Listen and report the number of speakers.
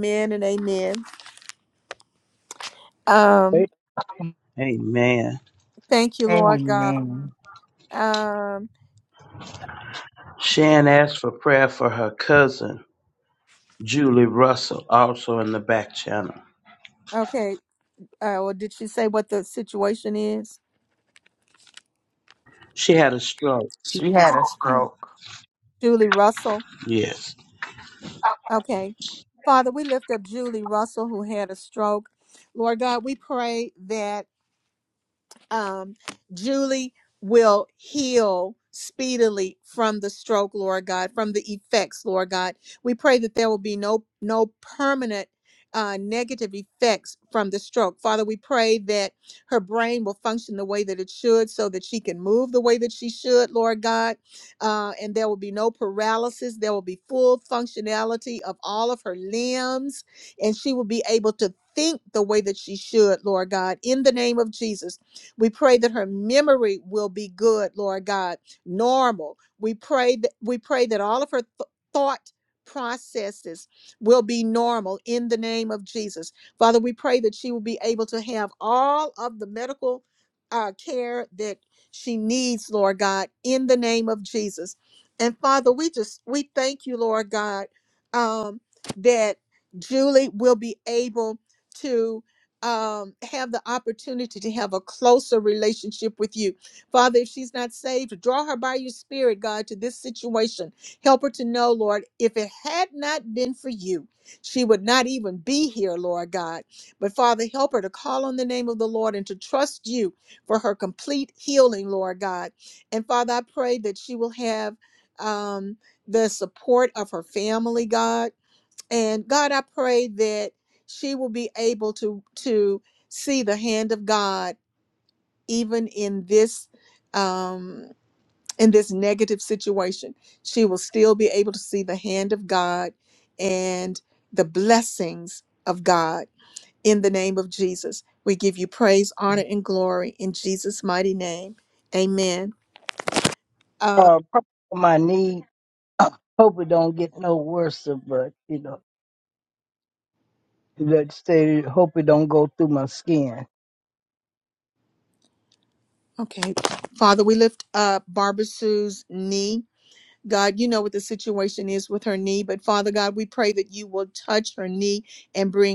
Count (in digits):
4